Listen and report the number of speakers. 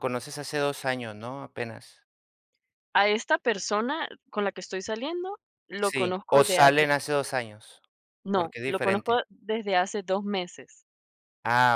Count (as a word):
two